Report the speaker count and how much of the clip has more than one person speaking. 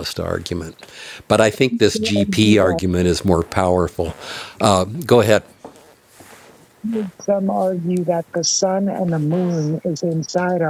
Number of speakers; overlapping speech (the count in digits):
2, about 8%